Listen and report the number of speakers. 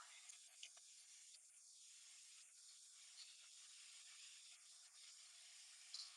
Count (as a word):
zero